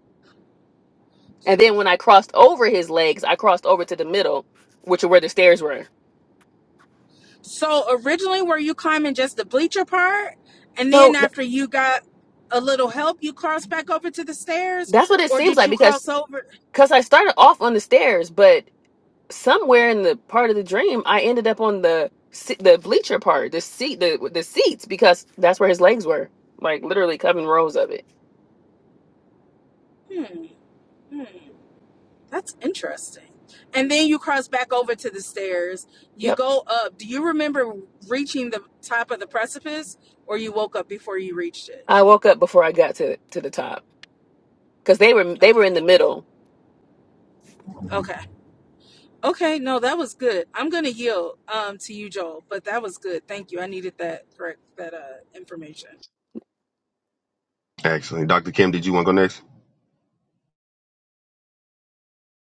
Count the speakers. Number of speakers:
3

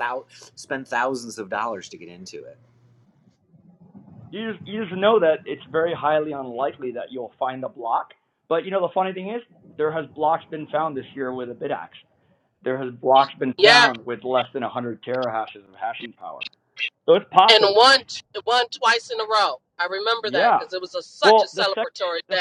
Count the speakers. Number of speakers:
3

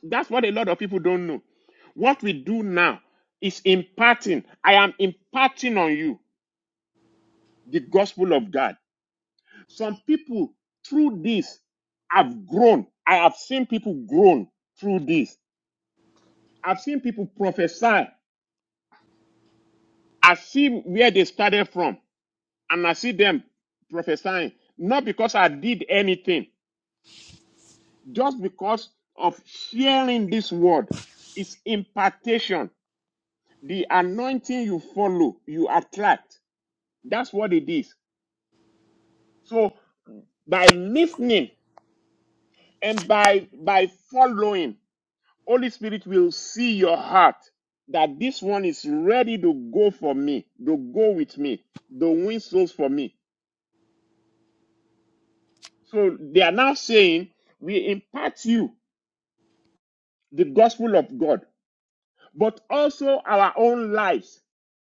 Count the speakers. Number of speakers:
1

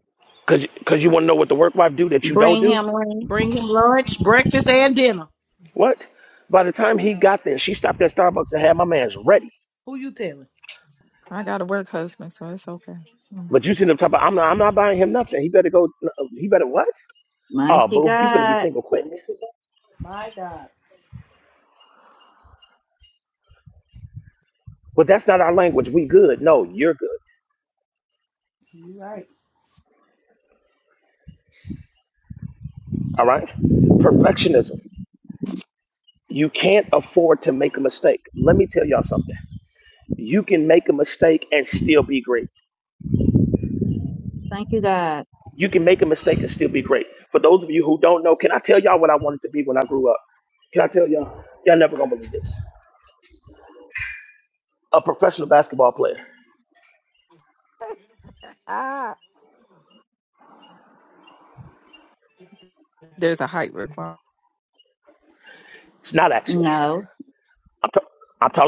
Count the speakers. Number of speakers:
4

